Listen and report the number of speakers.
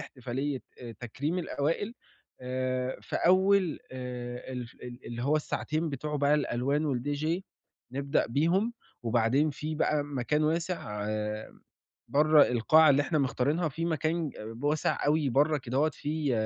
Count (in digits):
1